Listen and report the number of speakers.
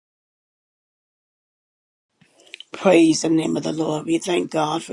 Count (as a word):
one